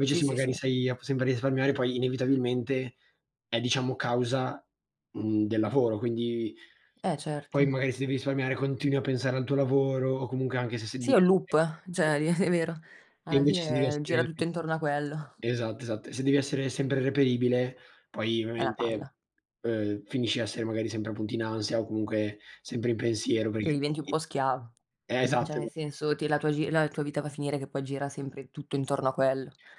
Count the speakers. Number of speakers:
2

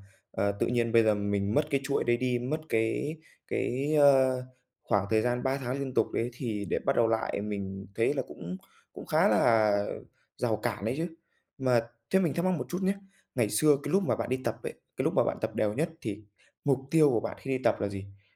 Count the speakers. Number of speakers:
1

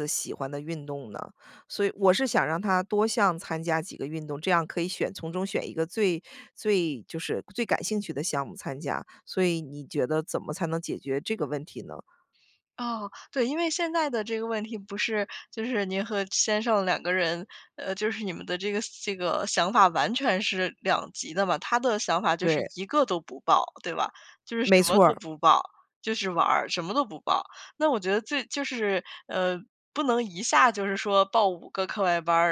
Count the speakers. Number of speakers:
2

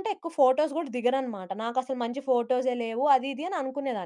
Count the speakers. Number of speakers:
1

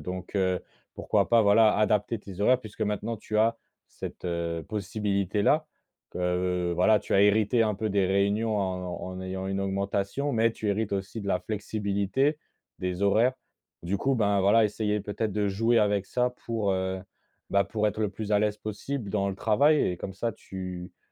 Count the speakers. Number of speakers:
1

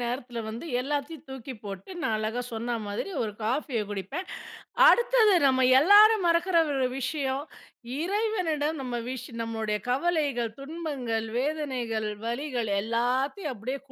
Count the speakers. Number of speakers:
1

